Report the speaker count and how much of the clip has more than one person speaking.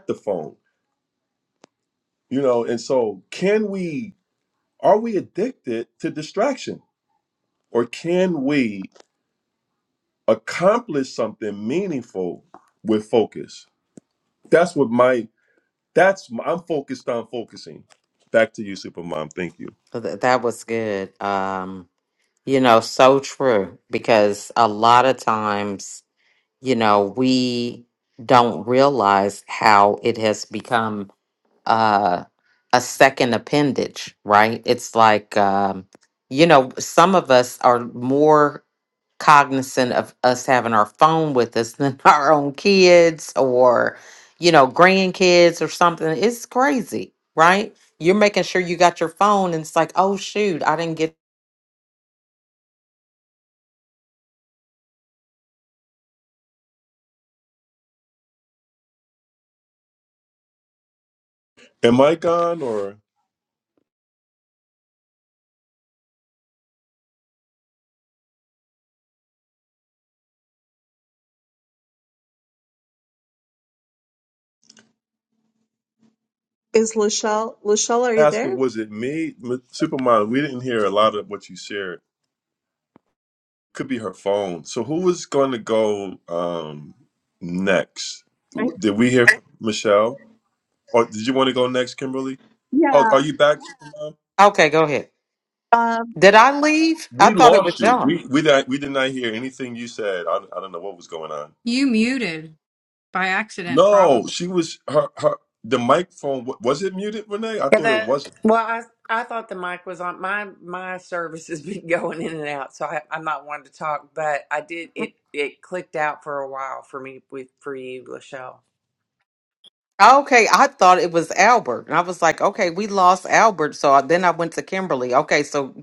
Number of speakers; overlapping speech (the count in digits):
5, about 2%